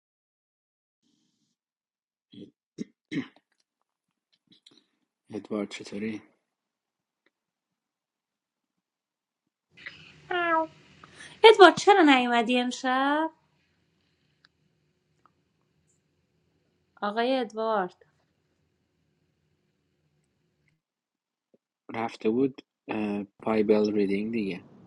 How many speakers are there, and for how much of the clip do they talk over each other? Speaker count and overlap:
2, no overlap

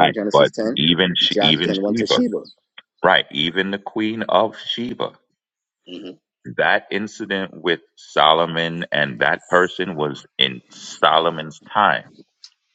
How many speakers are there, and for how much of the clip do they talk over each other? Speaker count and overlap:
2, about 14%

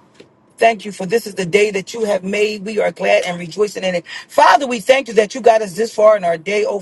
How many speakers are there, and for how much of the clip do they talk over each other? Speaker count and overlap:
1, no overlap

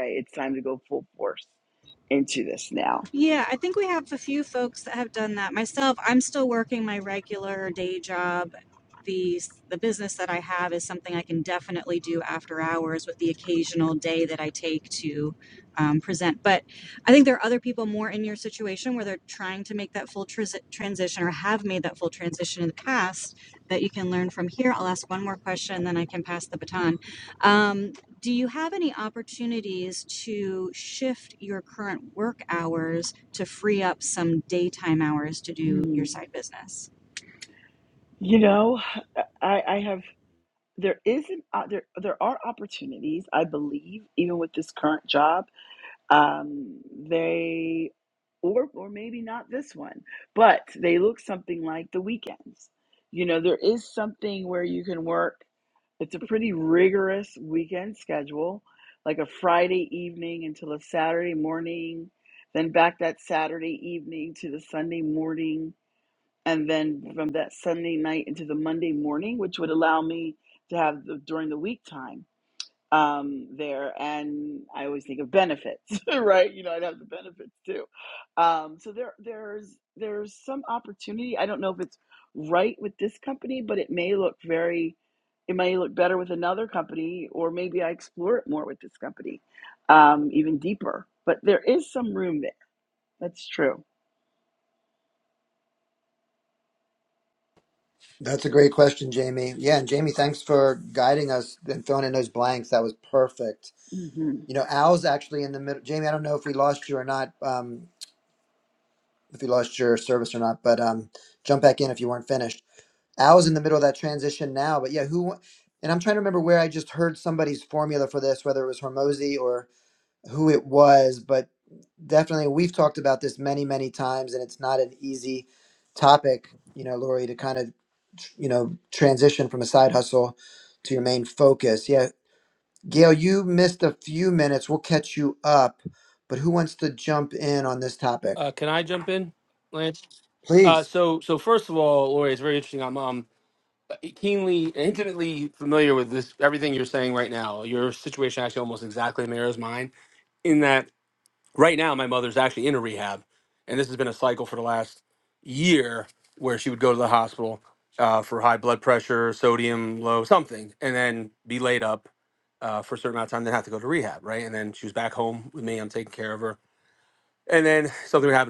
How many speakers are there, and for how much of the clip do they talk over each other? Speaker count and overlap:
4, under 1%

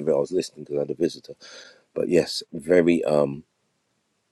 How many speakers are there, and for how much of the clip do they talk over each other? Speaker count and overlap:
1, no overlap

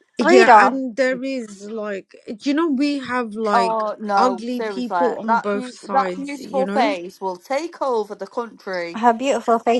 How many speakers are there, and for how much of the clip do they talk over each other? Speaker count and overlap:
3, about 41%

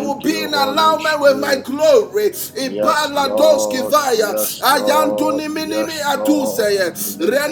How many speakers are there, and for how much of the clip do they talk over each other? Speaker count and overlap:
2, about 81%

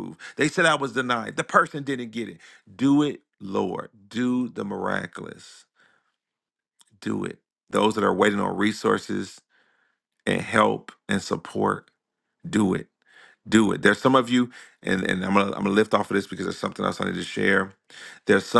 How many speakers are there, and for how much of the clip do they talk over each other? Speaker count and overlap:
1, no overlap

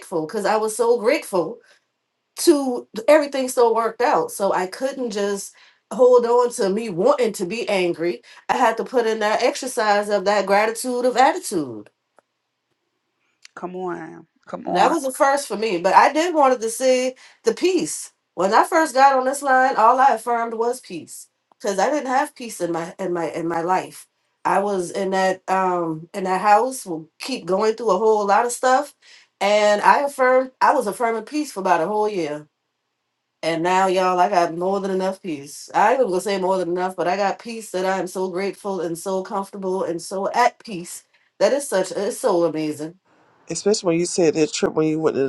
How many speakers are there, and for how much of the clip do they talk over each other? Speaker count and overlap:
3, about 1%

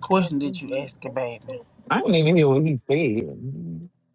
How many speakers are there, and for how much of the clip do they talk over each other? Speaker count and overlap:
2, no overlap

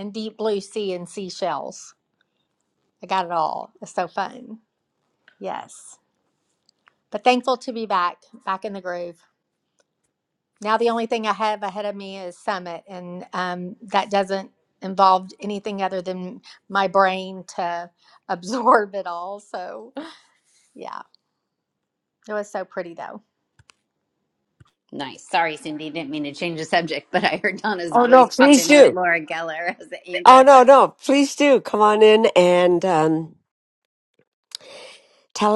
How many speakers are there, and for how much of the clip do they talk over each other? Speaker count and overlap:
3, about 4%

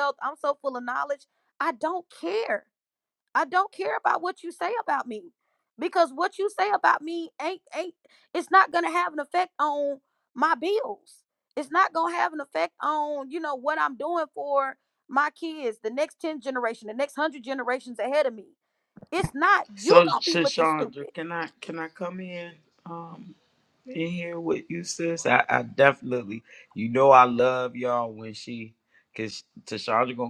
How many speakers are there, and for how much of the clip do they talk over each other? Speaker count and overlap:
2, about 4%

